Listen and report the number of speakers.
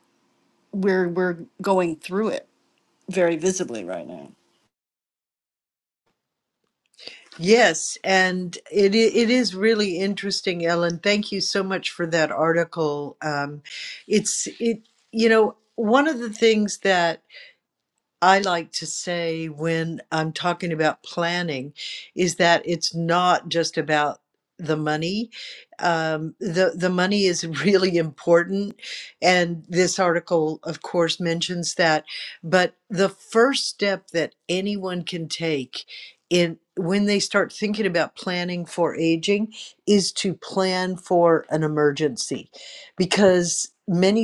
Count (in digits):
2